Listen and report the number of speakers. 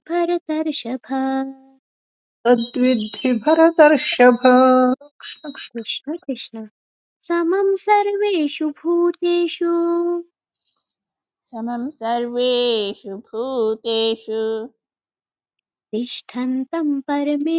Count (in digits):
3